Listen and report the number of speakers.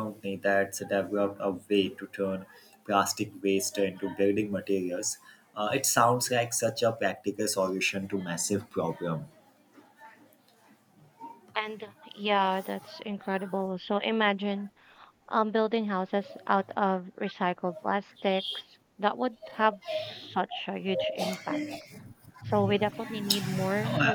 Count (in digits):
2